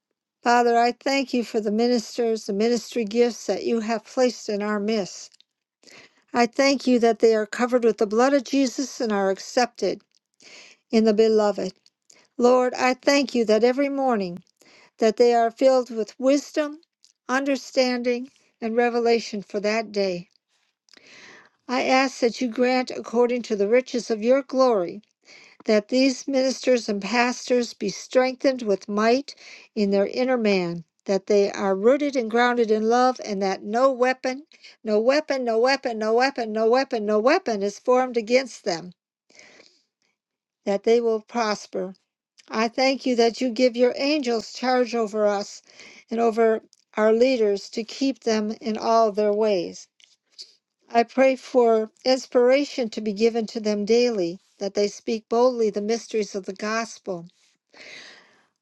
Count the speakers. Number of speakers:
1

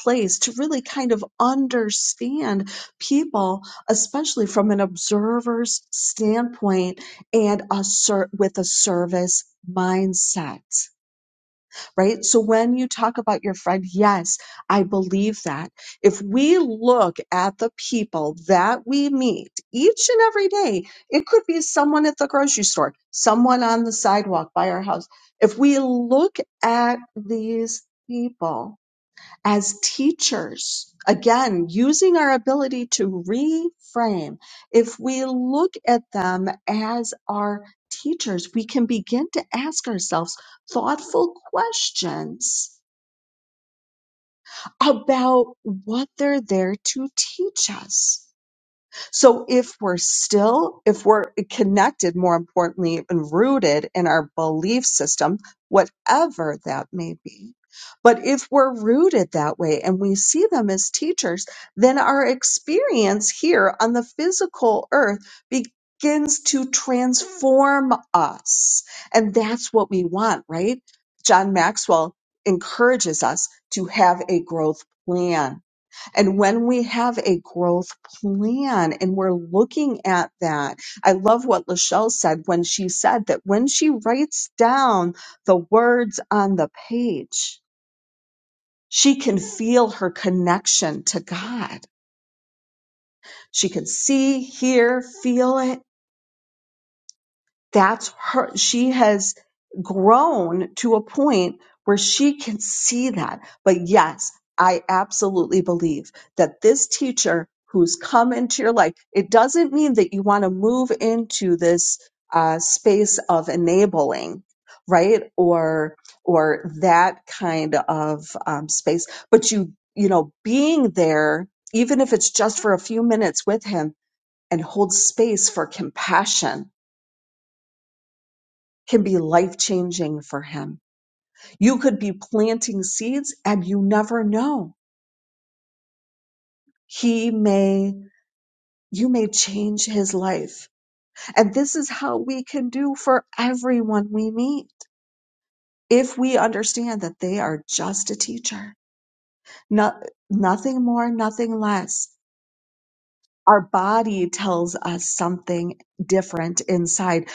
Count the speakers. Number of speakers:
1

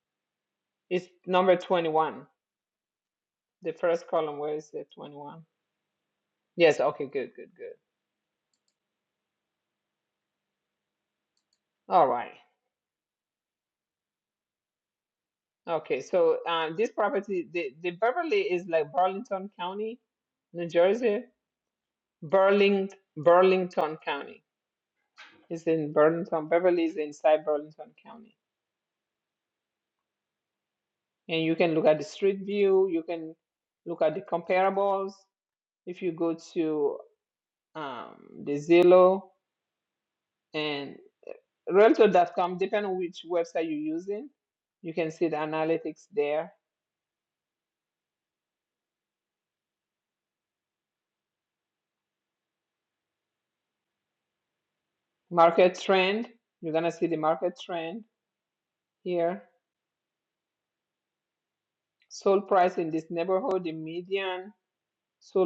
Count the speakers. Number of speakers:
1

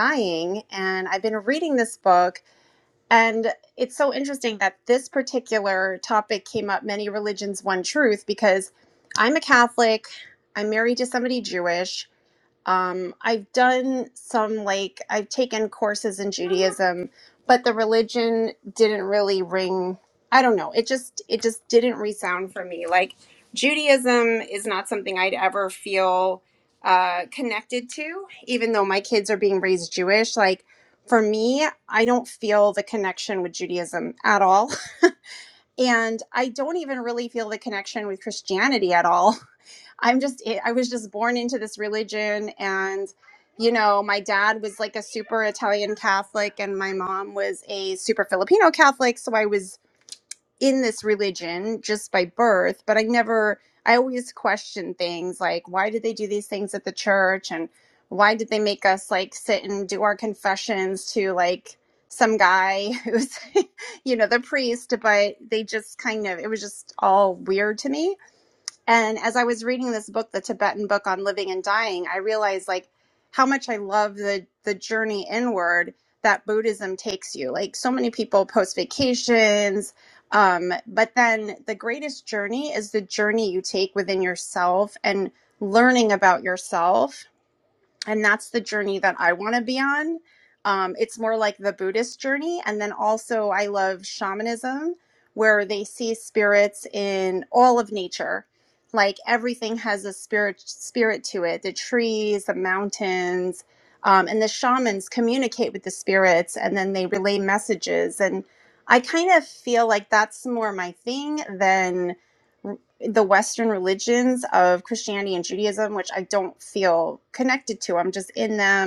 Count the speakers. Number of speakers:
1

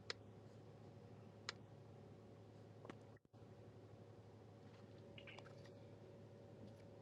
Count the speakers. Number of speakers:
0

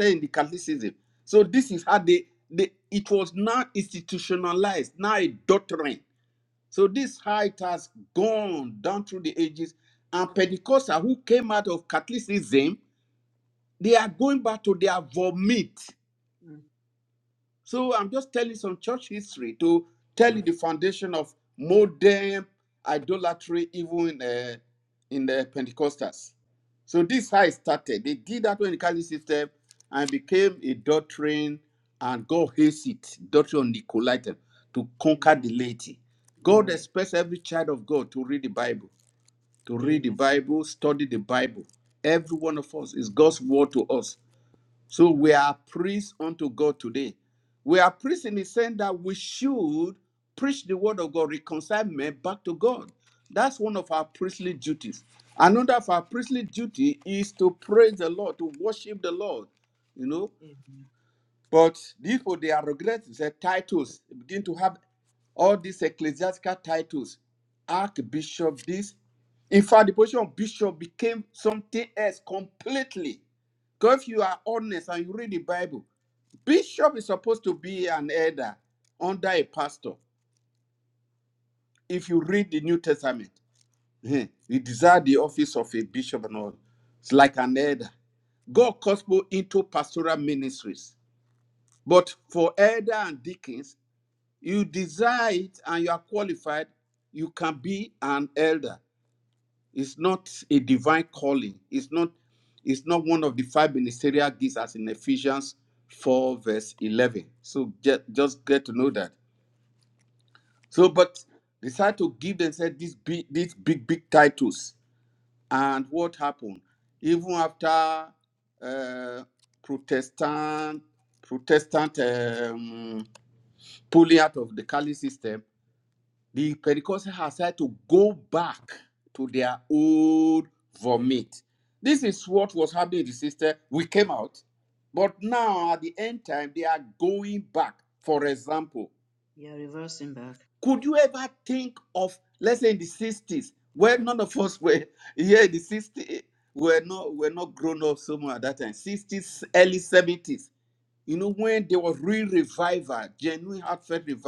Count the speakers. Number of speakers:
2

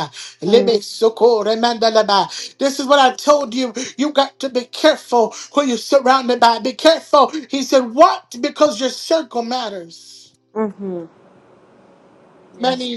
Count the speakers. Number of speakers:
2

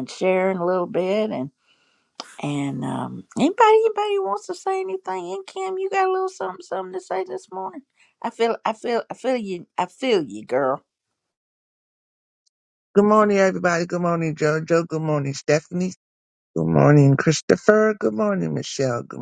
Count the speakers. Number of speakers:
2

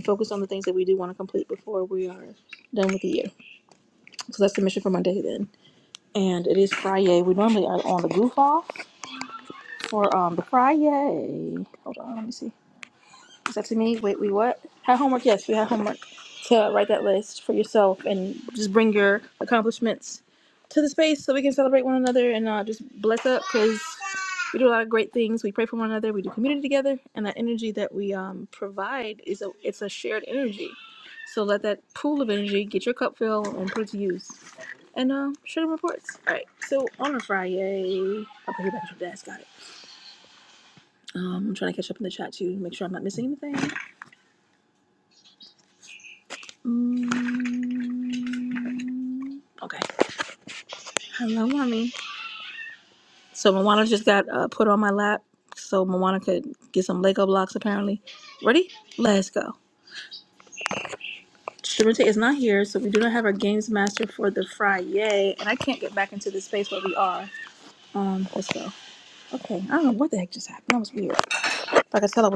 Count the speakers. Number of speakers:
1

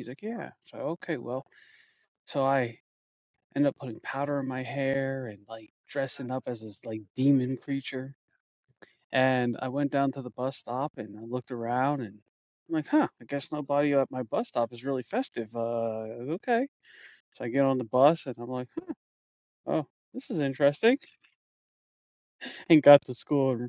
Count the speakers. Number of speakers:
1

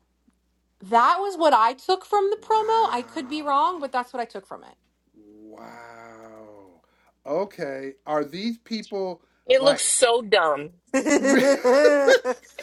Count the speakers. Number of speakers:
3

